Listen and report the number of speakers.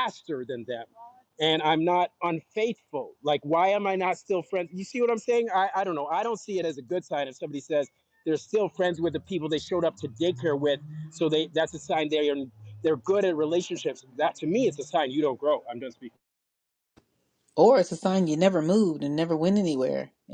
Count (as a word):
two